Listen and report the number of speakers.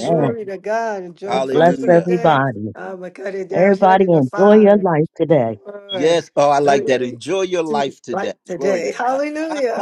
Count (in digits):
3